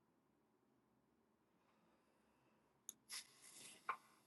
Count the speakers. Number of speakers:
zero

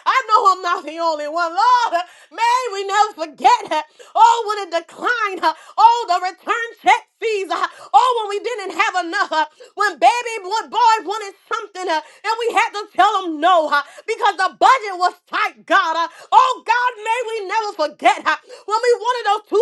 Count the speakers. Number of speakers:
one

